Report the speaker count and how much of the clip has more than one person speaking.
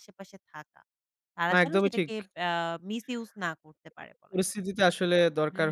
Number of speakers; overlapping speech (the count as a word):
two, about 13%